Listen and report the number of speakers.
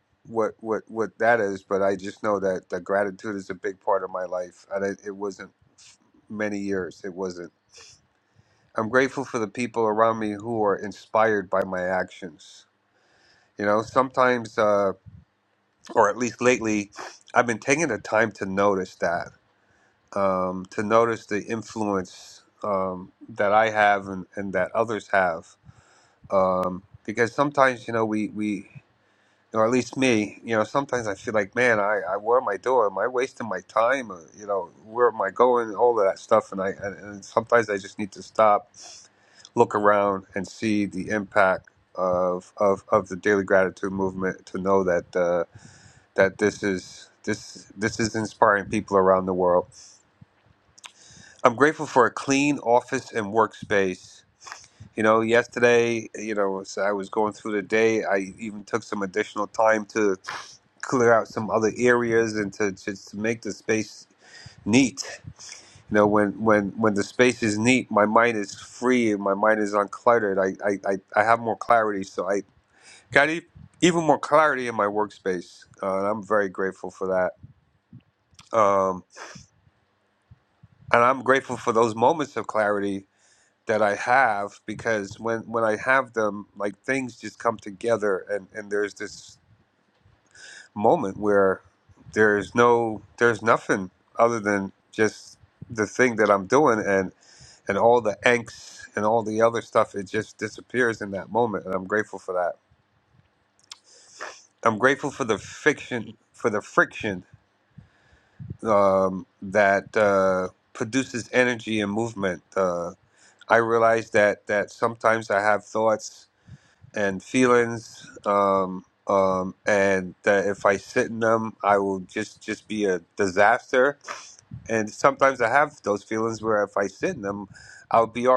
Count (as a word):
one